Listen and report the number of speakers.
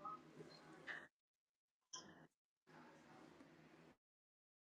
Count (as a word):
zero